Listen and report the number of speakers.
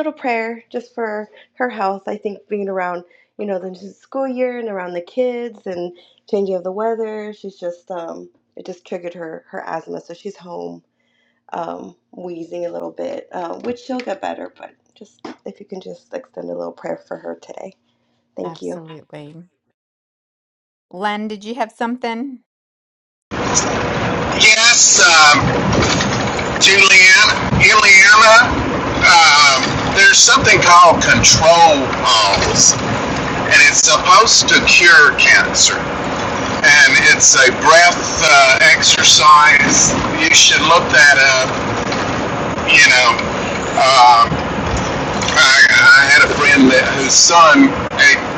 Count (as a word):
three